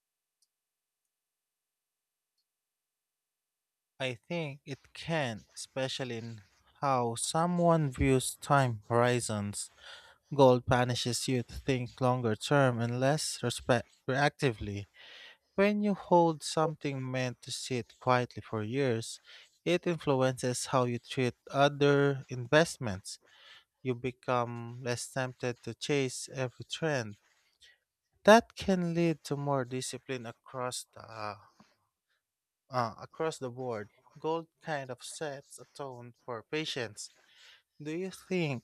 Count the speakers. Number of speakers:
1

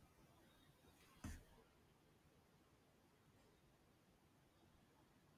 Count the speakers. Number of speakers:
0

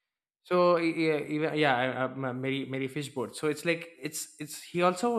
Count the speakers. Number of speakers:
1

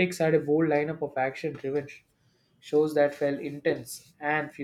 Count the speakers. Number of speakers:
1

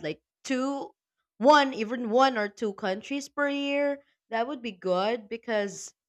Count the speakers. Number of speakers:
1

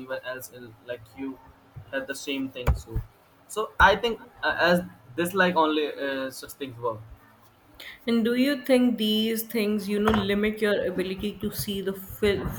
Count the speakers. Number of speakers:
2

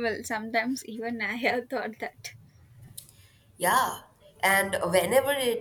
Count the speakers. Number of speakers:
2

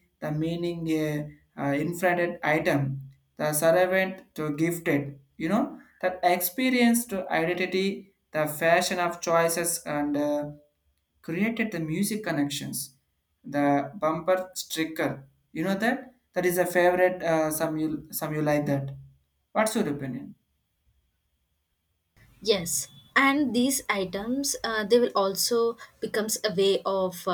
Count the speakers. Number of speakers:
2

